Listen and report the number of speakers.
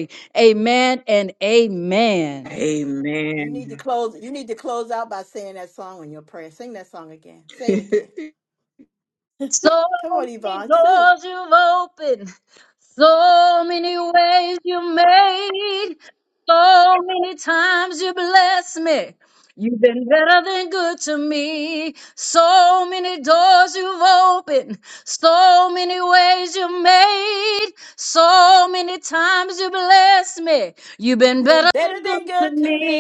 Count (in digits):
3